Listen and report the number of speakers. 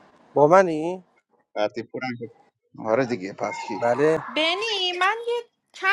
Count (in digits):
3